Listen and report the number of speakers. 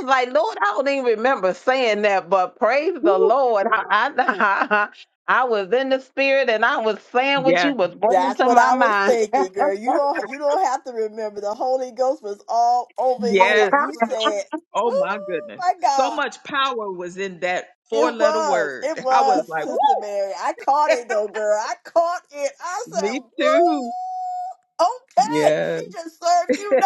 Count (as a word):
three